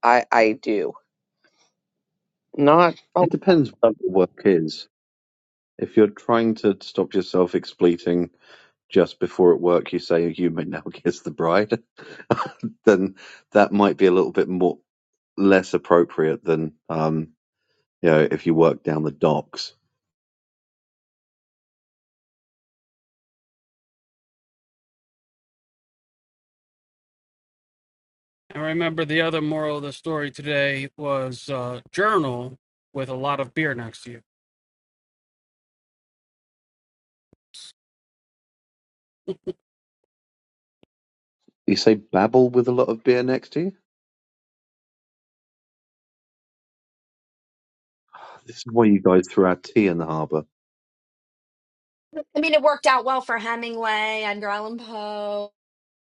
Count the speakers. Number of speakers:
4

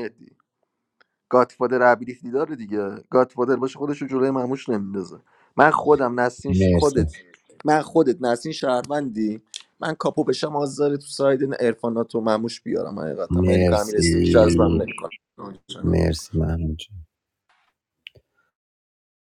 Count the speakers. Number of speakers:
2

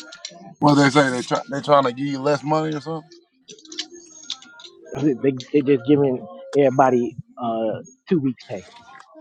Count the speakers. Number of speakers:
2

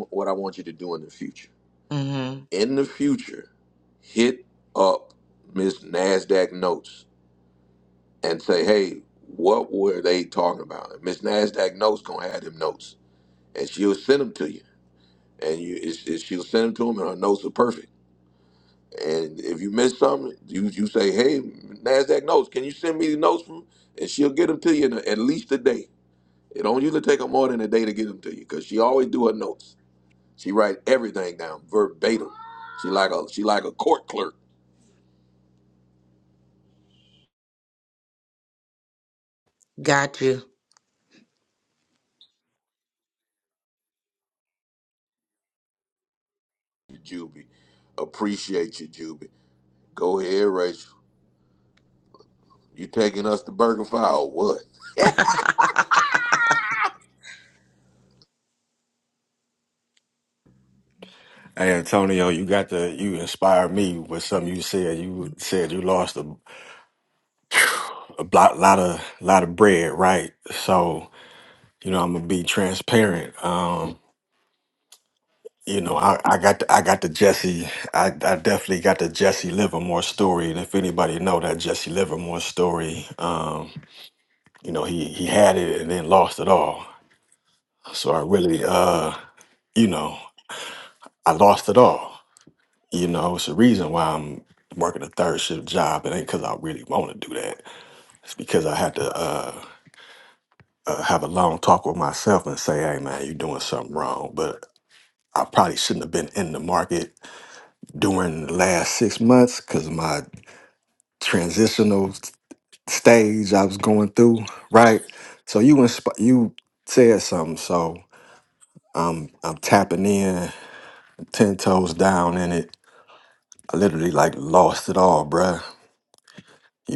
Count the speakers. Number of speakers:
3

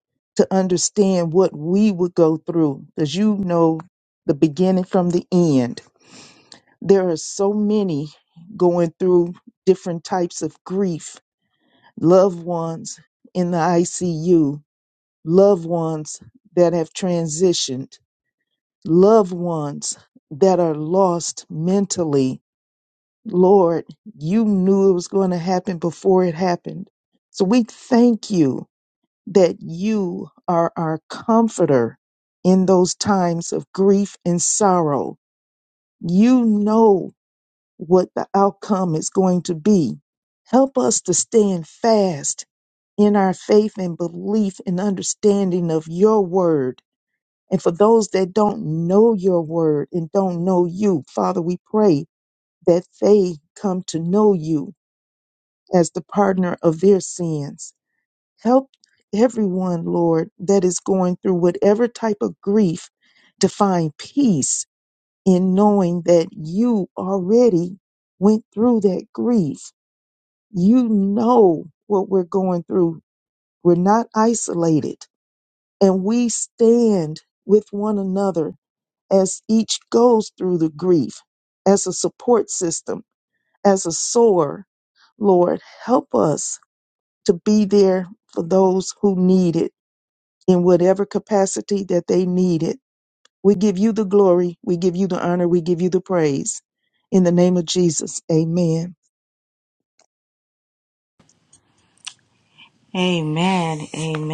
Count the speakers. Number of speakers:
2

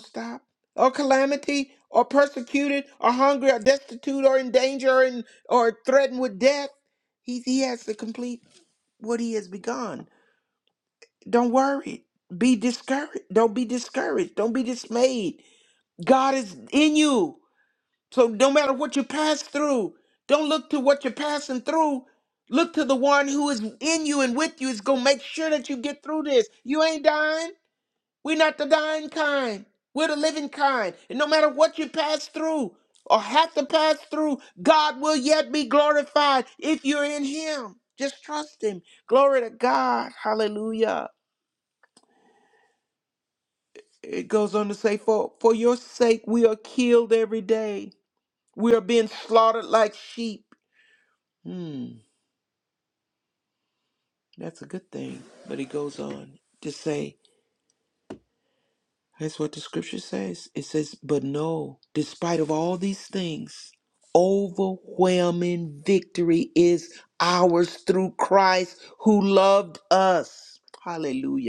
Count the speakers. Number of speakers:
1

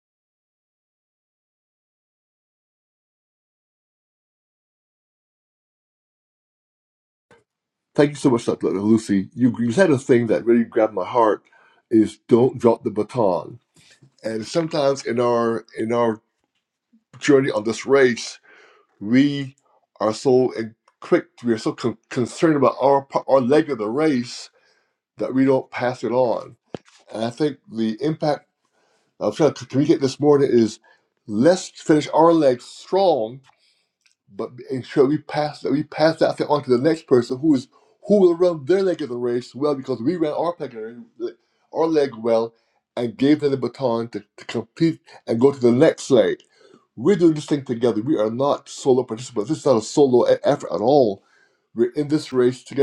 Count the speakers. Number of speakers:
1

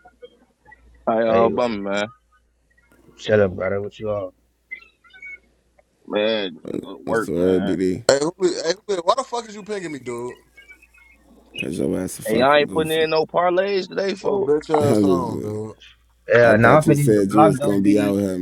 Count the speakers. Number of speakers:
4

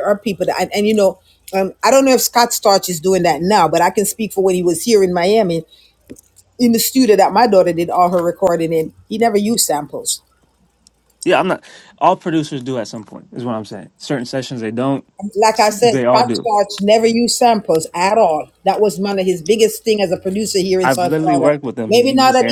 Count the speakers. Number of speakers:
2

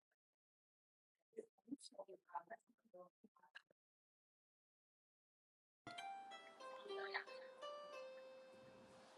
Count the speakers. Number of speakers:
0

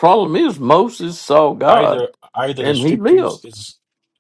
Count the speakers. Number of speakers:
2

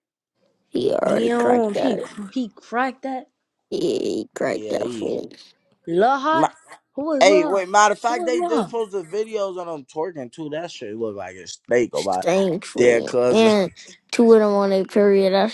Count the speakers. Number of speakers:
3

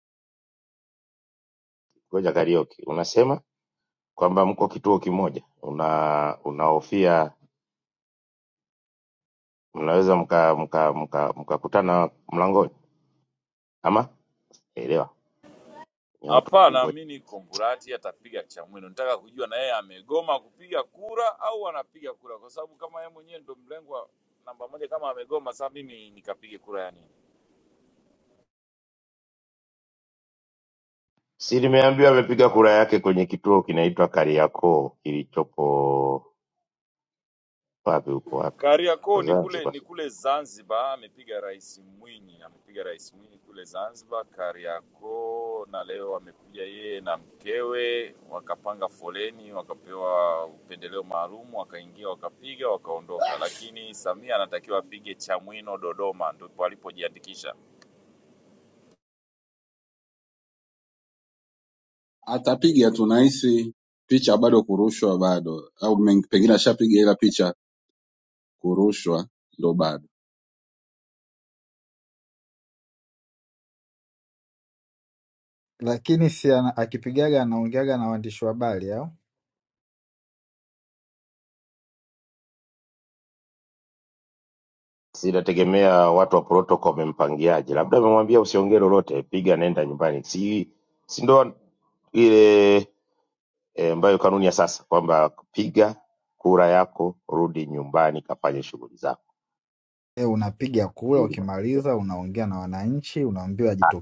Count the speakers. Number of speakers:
4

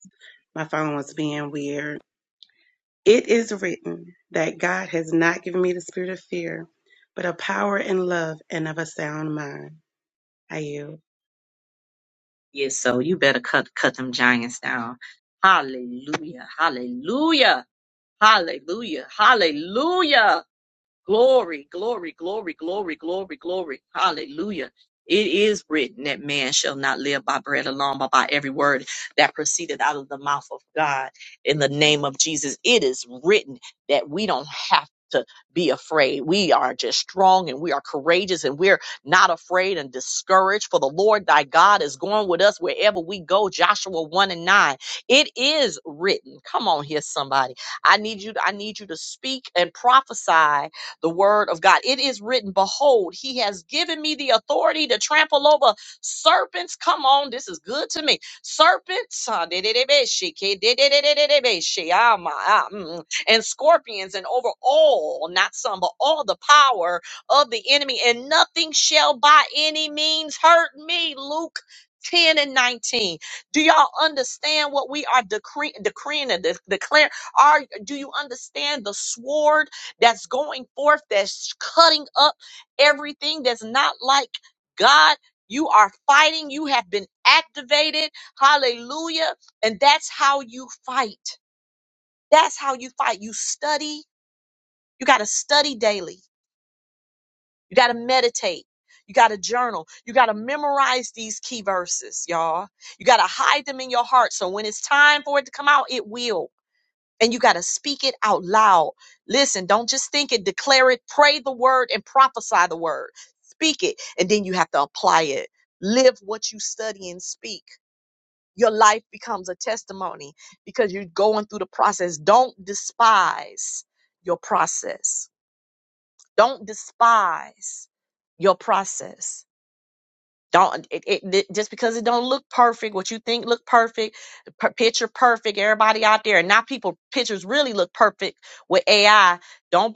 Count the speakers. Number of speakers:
2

